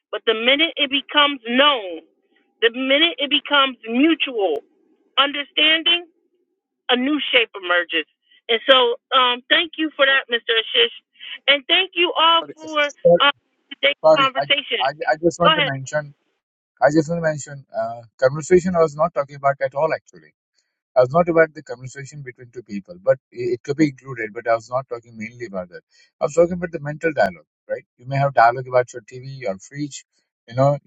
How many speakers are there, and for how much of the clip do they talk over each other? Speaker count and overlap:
2, about 3%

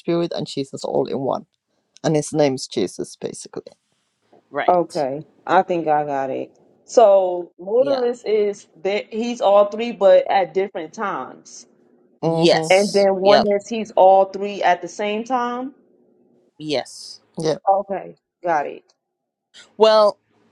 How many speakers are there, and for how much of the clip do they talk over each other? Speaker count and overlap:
3, about 5%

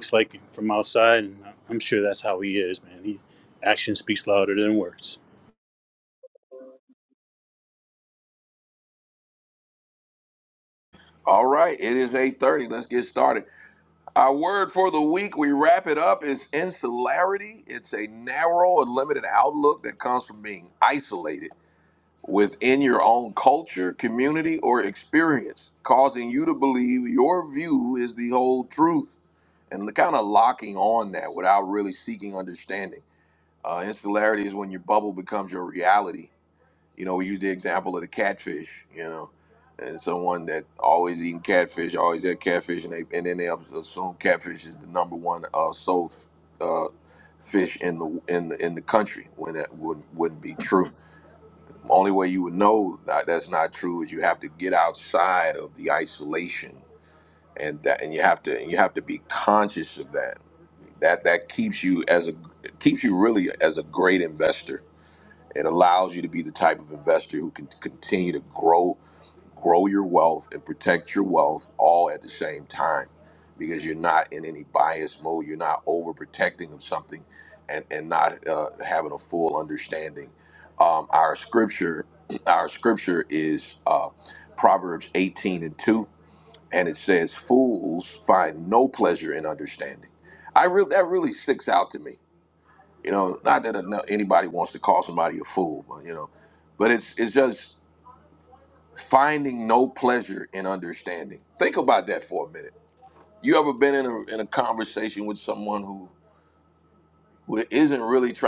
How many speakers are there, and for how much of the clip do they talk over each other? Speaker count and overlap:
2, no overlap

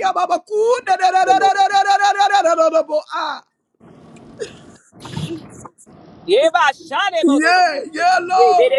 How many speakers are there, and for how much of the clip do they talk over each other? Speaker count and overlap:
2, about 22%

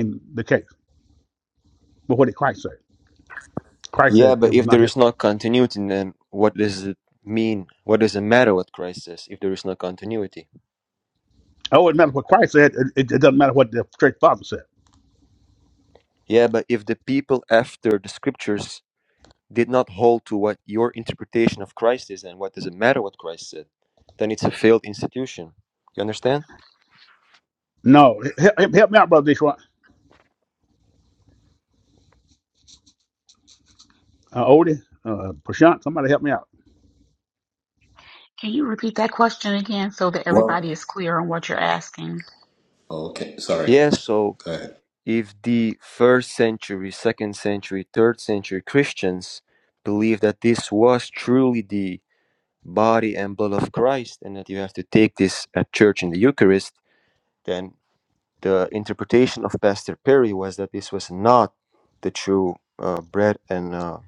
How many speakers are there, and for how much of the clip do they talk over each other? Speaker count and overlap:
4, about 2%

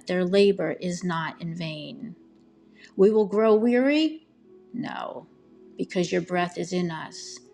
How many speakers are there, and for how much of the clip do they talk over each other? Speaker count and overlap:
1, no overlap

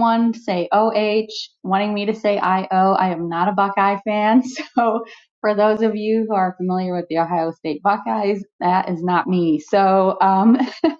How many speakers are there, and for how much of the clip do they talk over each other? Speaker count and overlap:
1, no overlap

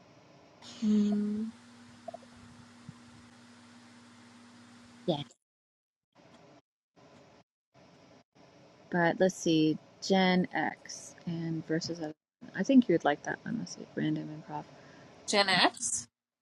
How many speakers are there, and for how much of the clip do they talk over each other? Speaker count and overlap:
2, no overlap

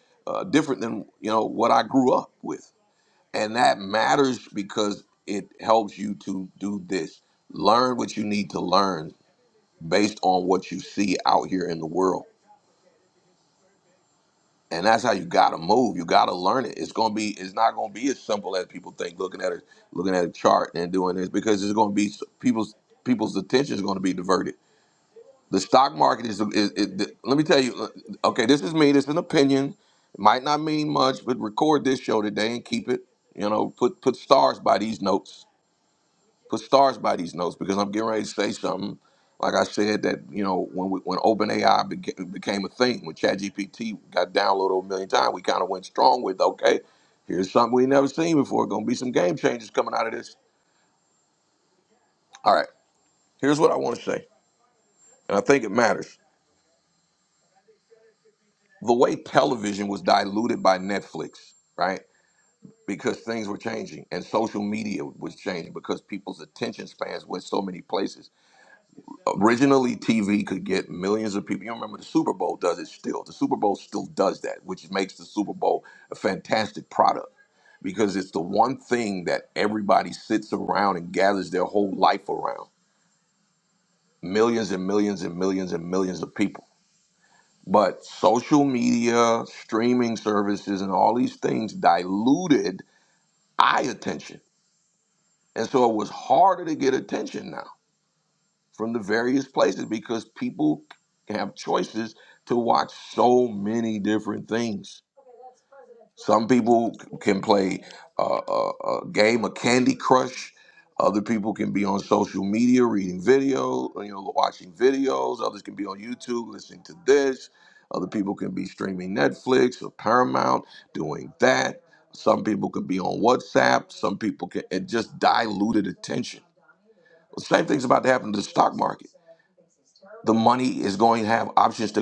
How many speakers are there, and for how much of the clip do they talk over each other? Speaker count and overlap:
1, no overlap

